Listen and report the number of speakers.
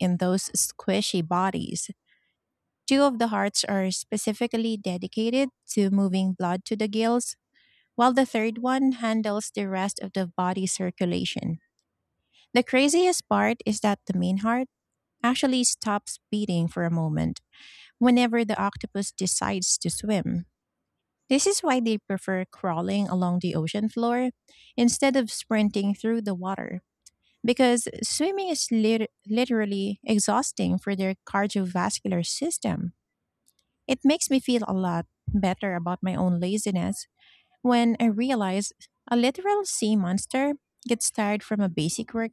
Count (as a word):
one